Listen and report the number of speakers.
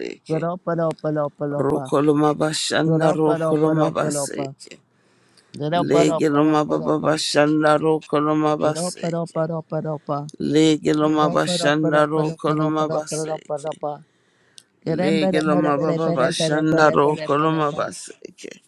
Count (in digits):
2